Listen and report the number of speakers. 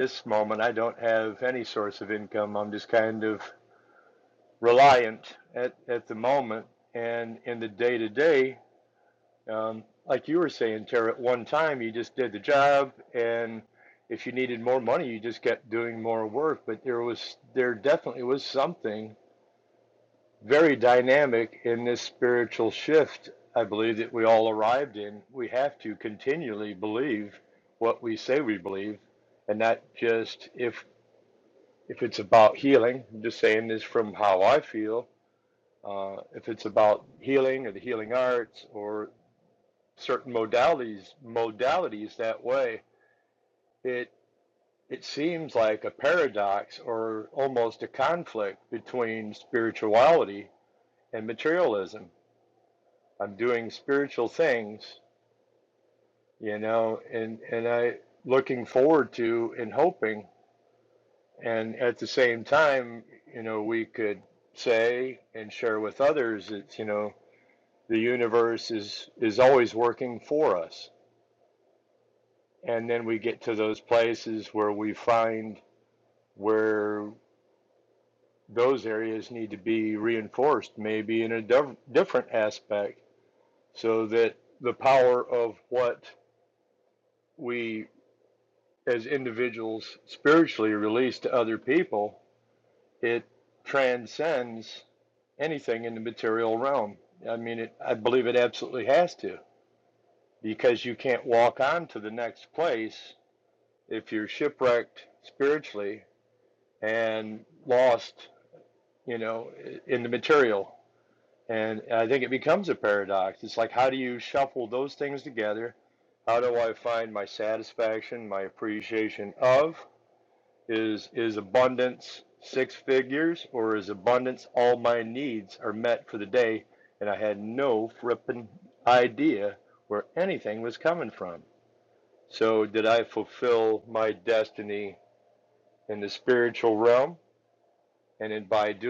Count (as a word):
one